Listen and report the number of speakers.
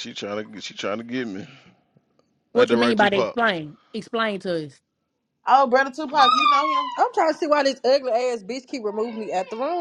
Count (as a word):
four